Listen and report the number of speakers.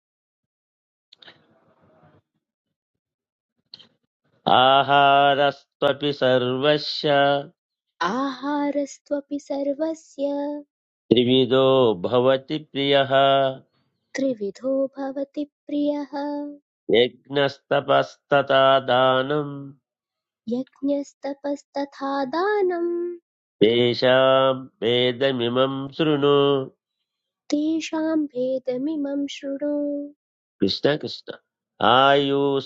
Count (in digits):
2